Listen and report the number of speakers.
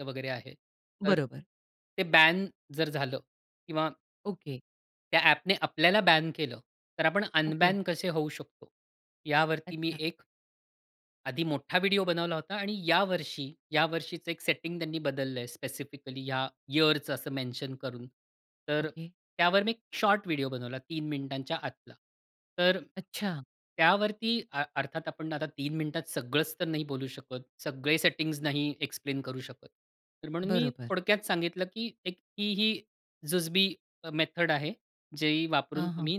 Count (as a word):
two